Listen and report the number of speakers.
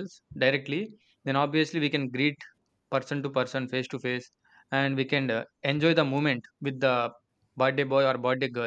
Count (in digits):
1